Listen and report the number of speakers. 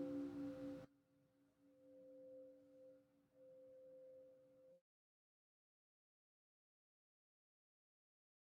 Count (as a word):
zero